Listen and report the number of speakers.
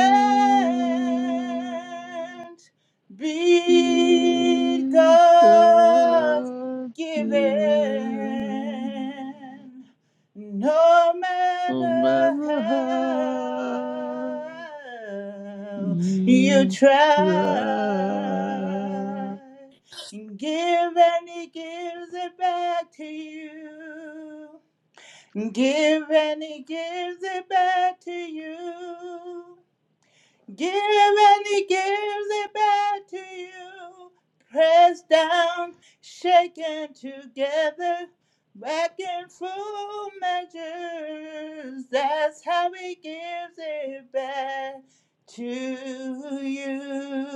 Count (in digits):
2